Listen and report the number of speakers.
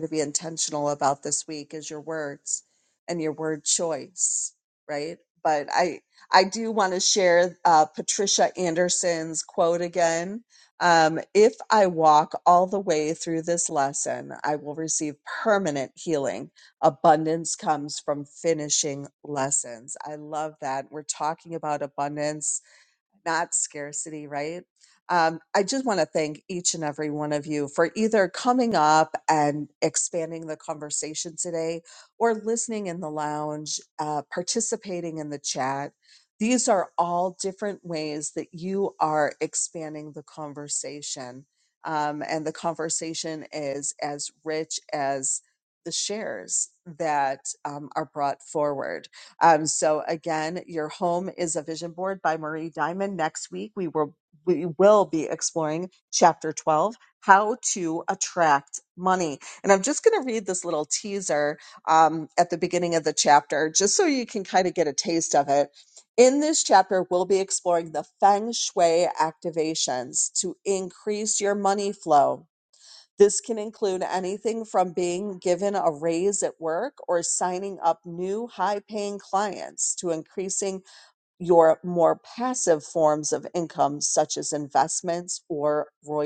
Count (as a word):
one